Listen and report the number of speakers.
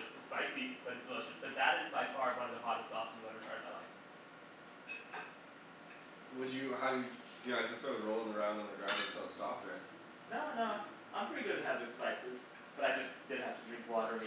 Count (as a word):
two